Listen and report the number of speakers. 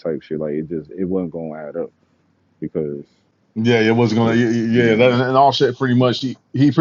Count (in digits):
2